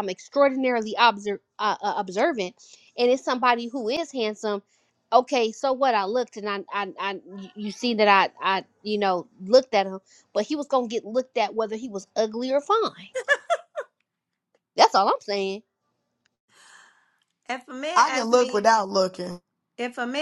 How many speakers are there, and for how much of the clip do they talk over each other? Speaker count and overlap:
3, about 3%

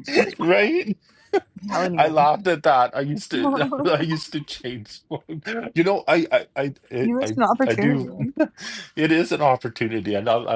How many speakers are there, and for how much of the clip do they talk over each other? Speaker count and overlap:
2, about 13%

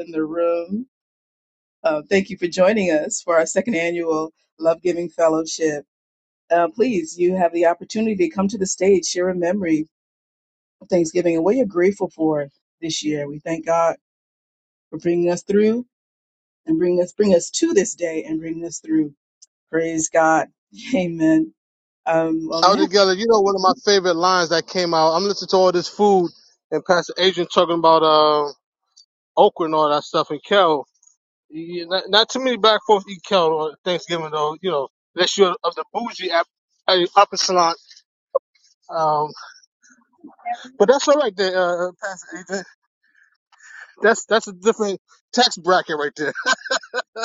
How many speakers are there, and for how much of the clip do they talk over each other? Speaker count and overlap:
2, under 1%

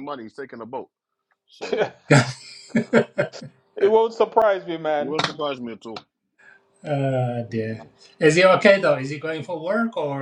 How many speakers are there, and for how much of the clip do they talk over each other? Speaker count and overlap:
3, about 3%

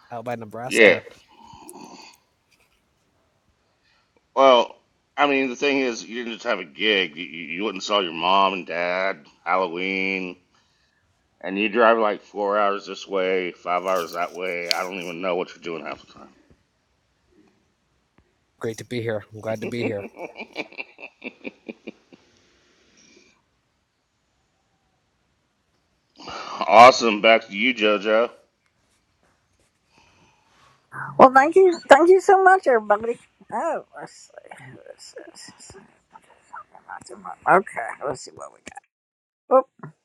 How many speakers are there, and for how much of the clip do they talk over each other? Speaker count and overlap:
3, about 2%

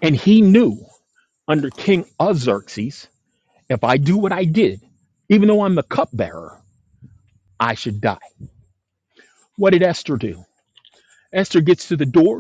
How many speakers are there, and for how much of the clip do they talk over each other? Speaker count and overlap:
1, no overlap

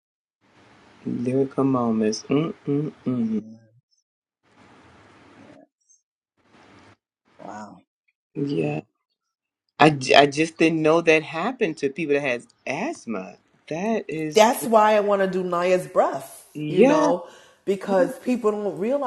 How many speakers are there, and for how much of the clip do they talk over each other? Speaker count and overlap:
3, about 6%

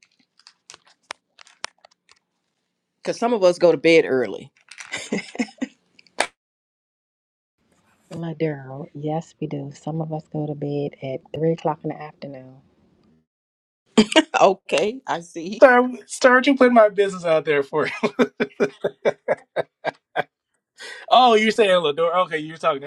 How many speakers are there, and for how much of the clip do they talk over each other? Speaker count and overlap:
3, no overlap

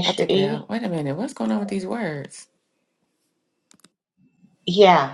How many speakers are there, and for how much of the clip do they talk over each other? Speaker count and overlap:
2, about 11%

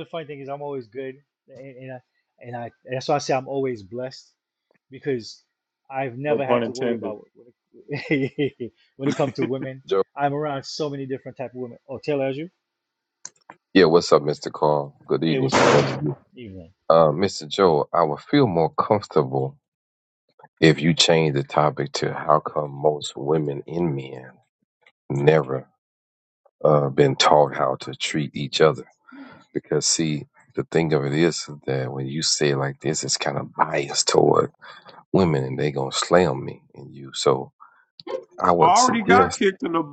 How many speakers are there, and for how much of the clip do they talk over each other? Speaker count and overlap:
3, about 5%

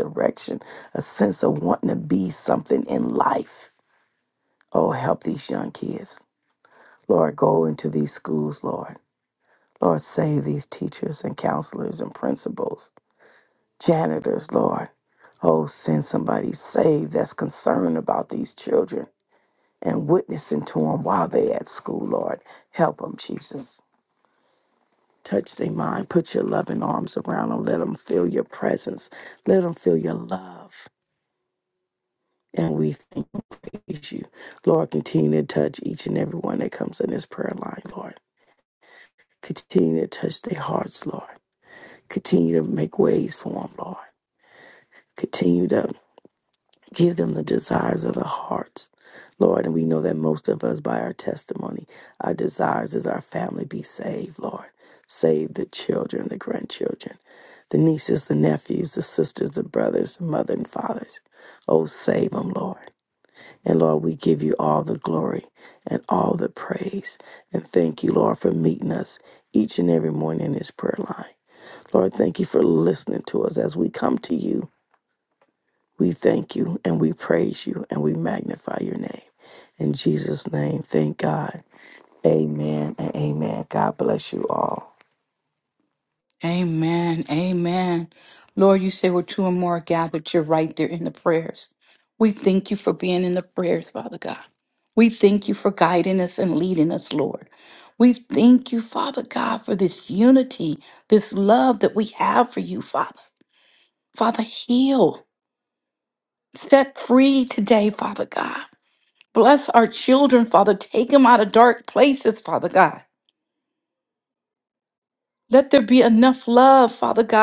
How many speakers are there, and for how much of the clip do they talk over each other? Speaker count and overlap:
2, no overlap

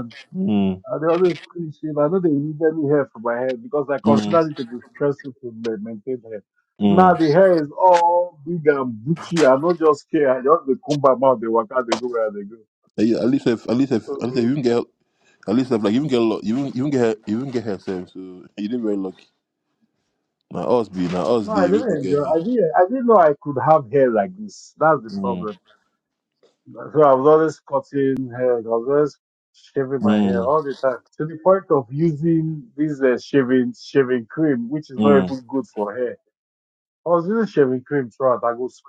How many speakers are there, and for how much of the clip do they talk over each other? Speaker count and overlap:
2, about 8%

